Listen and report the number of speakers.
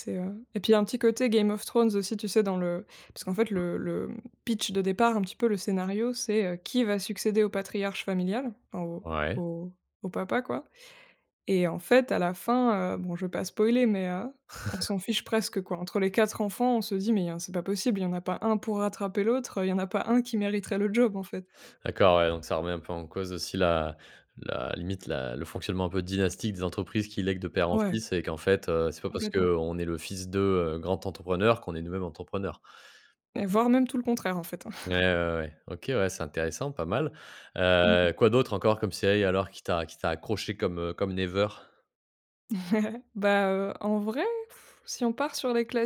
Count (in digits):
2